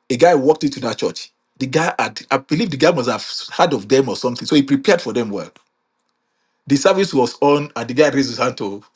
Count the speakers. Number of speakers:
1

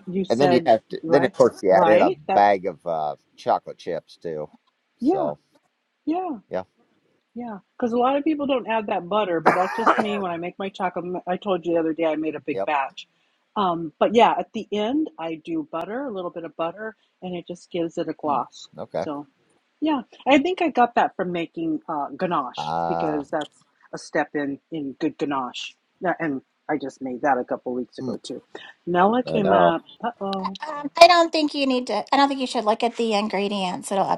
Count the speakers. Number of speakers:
3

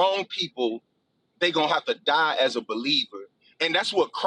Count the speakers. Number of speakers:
1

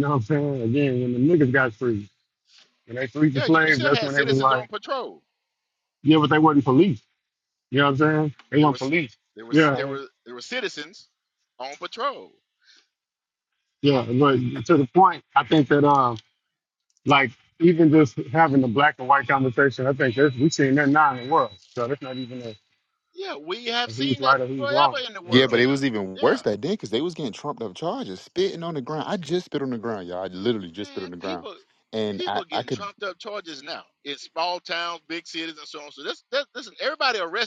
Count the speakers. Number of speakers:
3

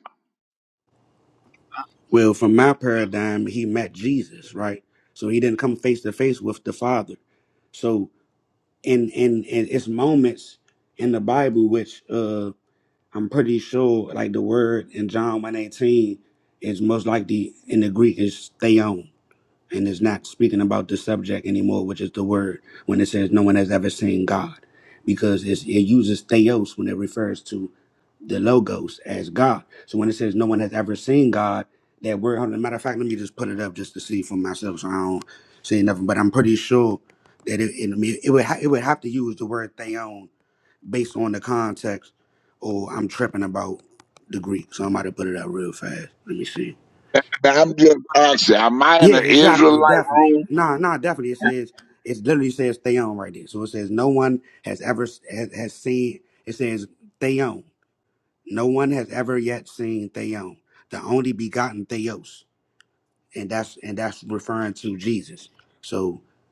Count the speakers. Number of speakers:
2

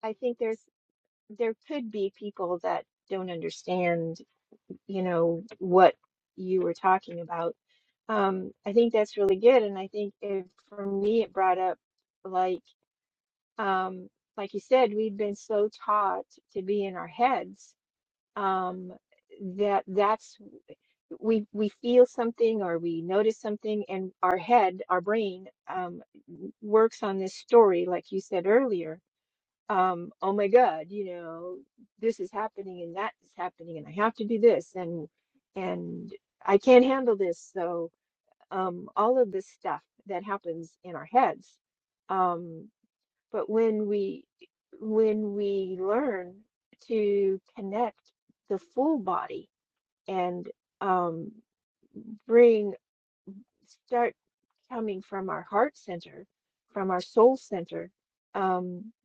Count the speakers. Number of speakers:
1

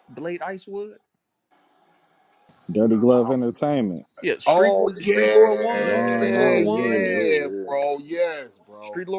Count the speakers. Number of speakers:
3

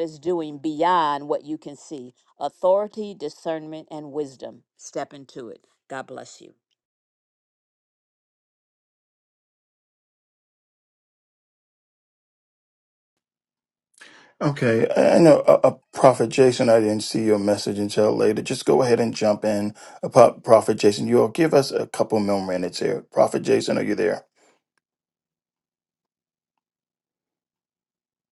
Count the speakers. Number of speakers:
2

